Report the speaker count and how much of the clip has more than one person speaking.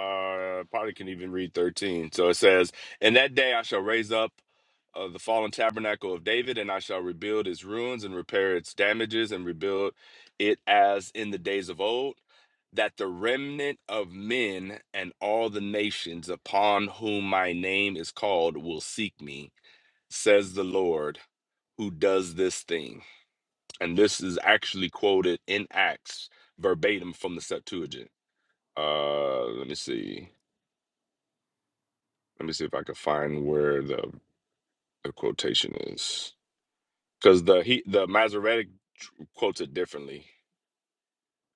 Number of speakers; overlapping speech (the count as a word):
one, no overlap